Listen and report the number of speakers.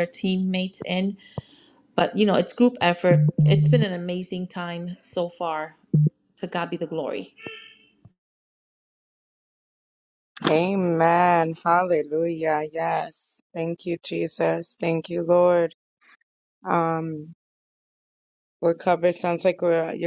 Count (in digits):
2